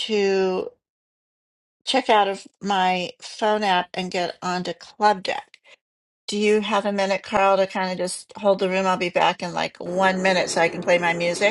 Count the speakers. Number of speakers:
1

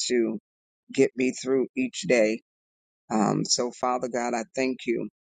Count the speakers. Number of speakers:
1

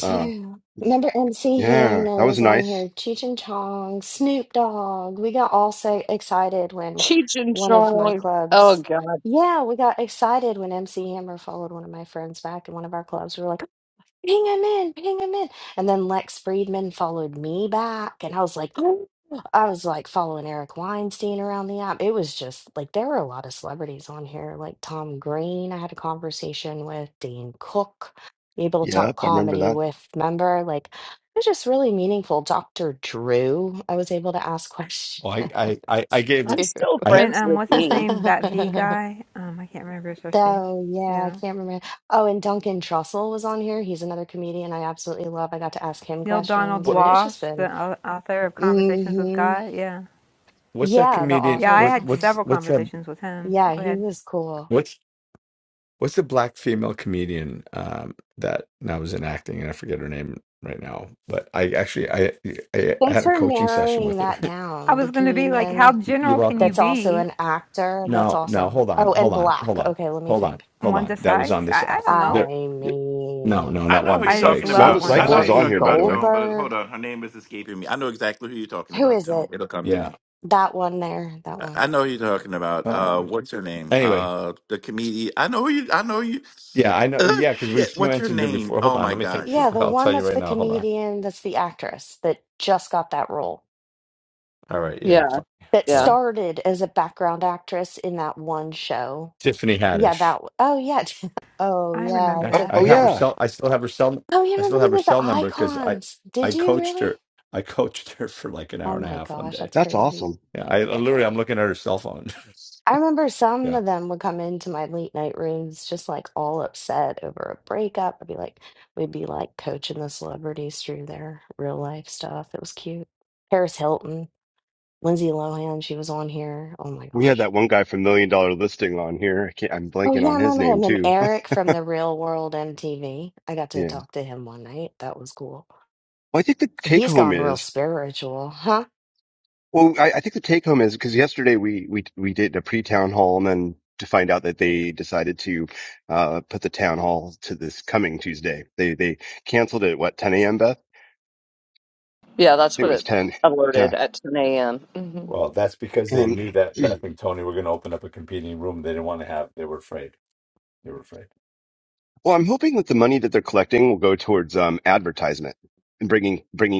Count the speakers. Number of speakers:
6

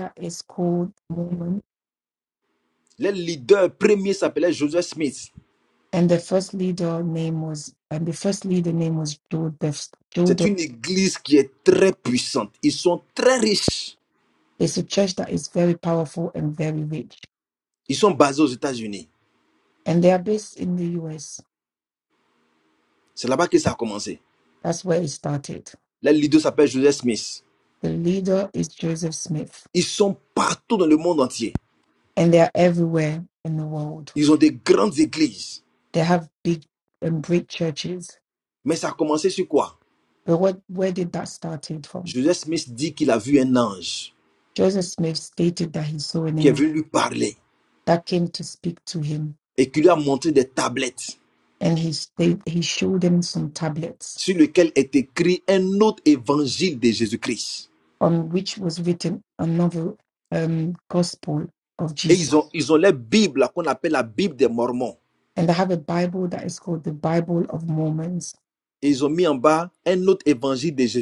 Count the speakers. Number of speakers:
2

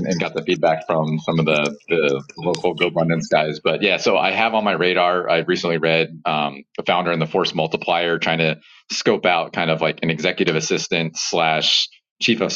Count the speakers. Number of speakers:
1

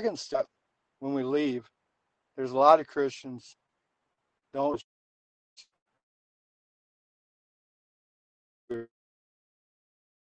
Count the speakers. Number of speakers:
1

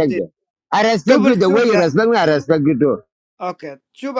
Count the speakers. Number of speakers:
2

